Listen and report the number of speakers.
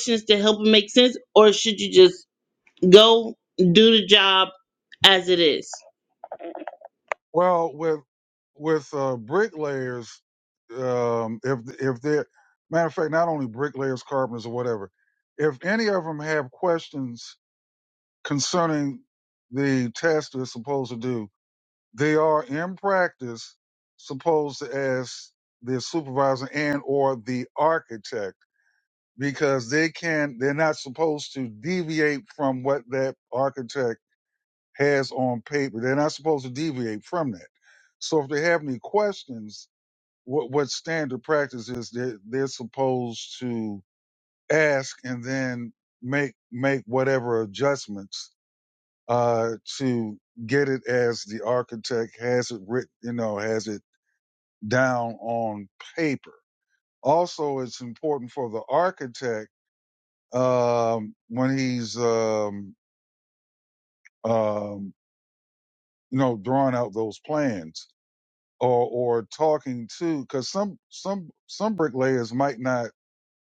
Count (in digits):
2